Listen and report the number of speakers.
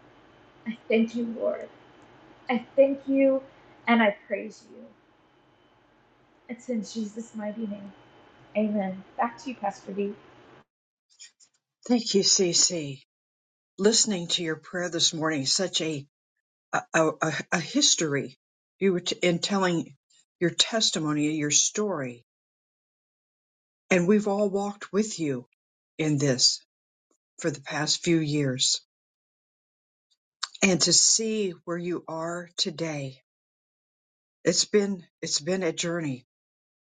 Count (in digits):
2